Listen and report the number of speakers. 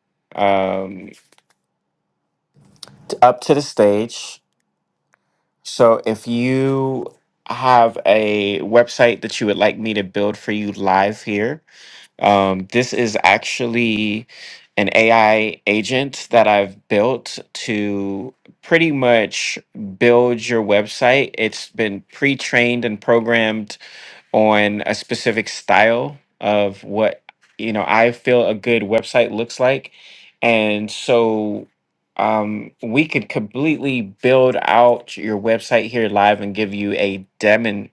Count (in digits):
1